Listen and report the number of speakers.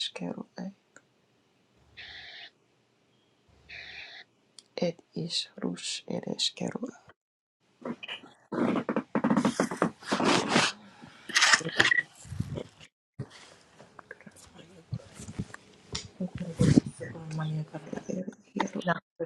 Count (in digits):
2